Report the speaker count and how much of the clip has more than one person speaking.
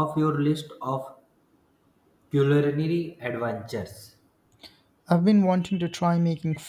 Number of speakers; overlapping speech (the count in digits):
2, no overlap